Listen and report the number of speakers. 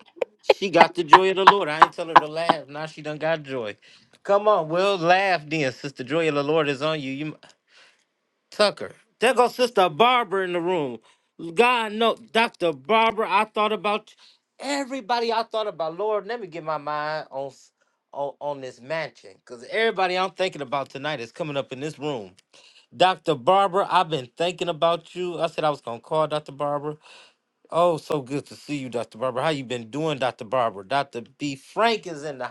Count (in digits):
1